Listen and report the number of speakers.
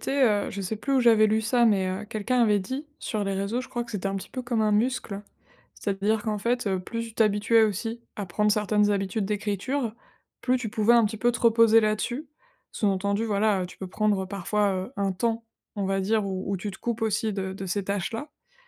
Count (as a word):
one